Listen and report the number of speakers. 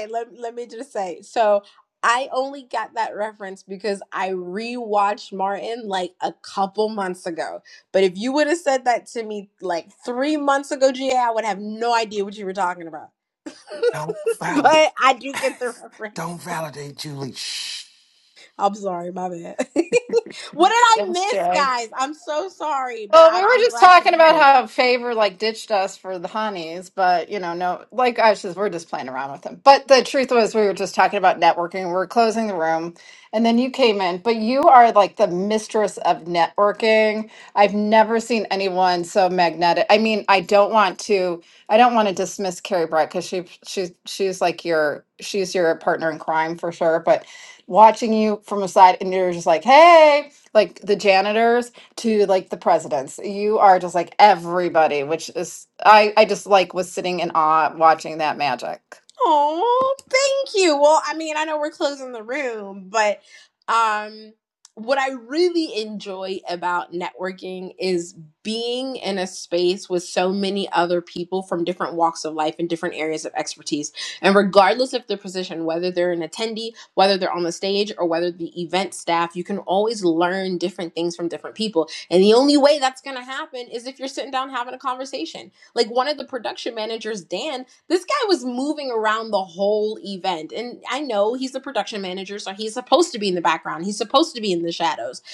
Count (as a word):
three